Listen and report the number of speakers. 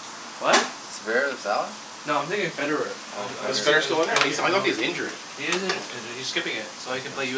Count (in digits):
3